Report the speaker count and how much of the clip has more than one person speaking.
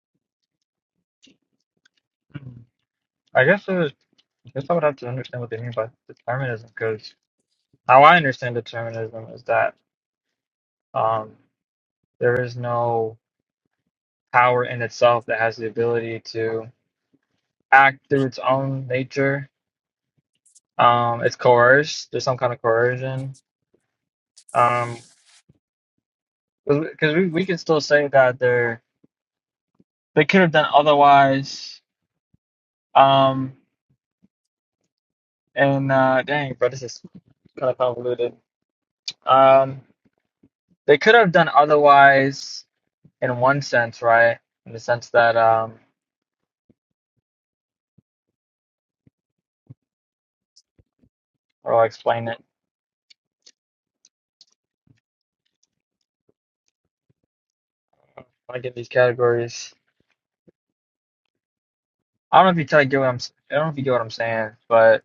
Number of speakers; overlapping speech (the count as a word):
one, no overlap